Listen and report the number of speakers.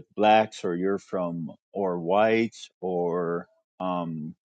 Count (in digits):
1